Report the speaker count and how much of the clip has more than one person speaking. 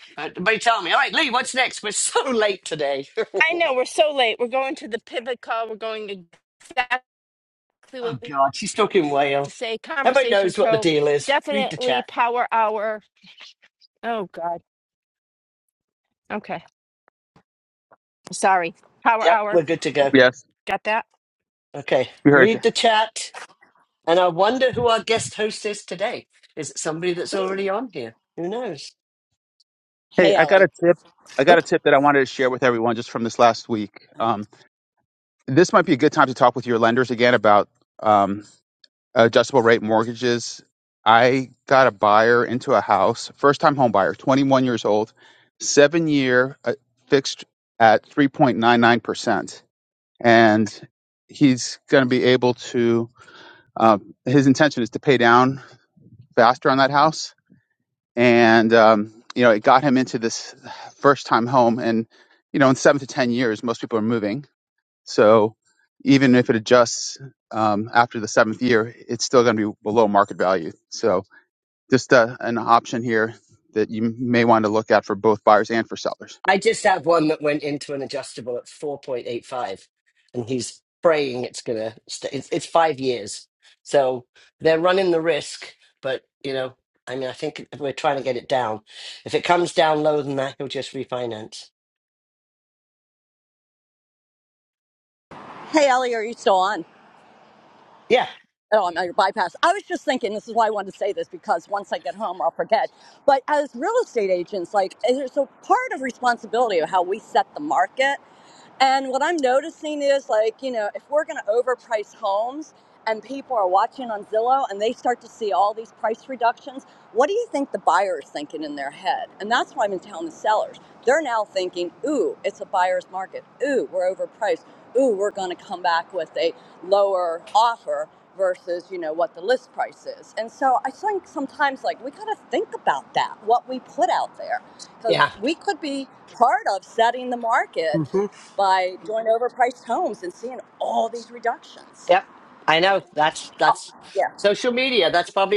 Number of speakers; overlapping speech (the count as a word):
four, about 3%